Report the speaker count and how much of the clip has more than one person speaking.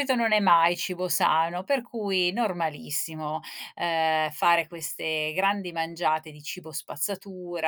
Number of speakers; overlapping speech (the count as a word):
one, no overlap